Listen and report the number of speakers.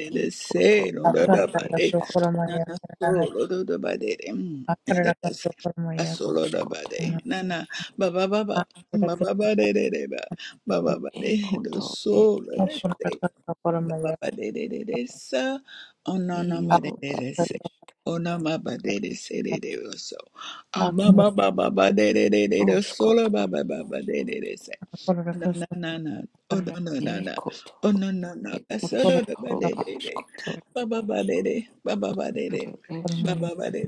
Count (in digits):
3